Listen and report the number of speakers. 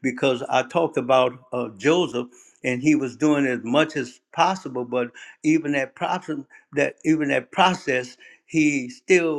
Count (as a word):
one